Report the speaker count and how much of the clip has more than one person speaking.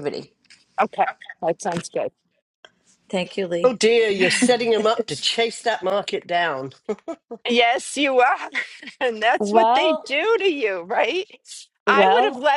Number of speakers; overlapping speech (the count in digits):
3, about 10%